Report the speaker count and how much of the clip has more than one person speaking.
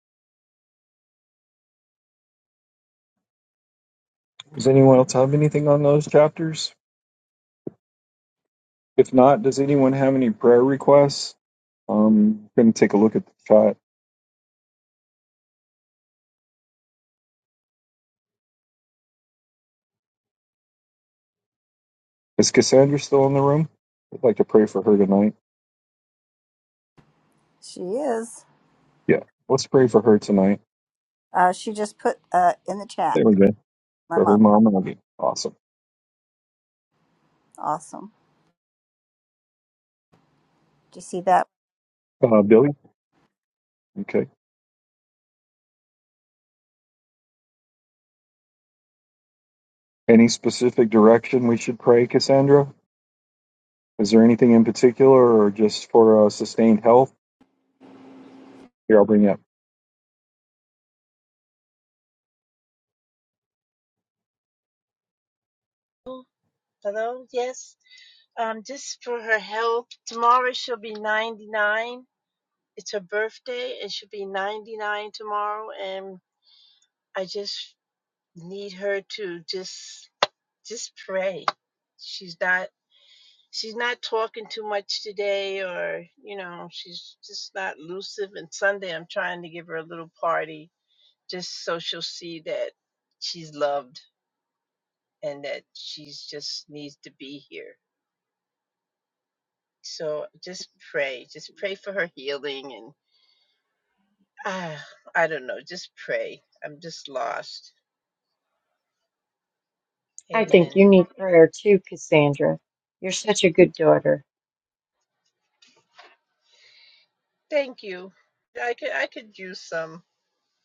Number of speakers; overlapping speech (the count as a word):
four, about 1%